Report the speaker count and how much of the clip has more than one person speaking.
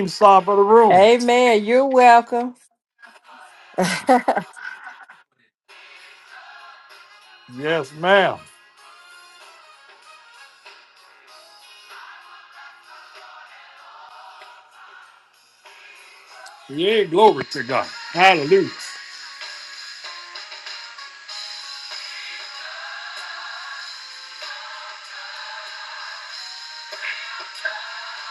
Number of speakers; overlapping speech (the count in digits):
2, under 1%